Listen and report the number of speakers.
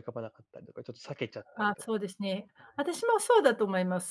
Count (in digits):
2